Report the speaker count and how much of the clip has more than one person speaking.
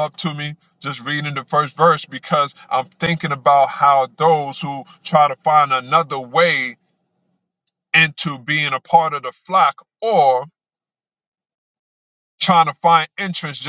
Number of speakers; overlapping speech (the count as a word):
one, no overlap